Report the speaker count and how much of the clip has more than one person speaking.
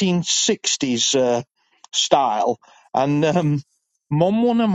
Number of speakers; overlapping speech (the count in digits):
1, no overlap